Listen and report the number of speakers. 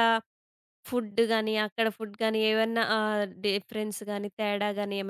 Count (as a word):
one